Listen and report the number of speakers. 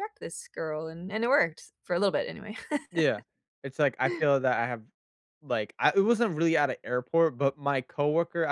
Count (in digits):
2